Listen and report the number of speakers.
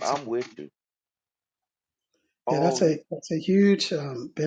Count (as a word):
two